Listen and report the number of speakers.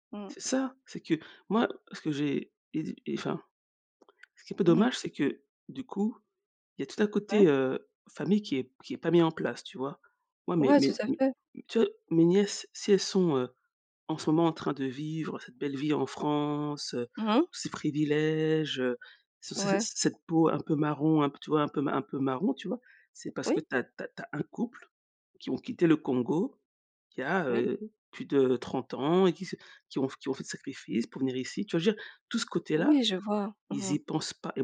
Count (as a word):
two